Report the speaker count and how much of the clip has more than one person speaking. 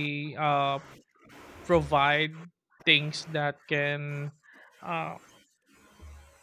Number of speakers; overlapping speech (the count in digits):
1, no overlap